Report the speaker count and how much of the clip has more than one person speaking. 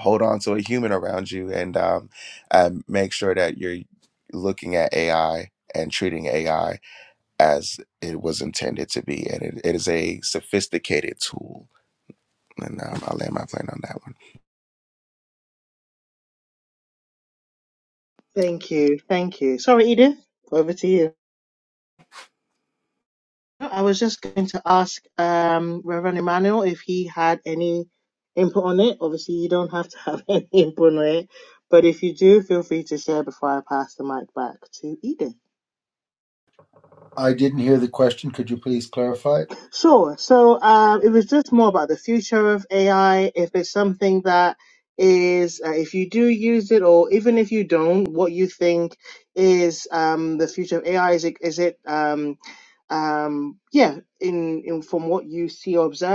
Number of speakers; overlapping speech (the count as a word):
three, no overlap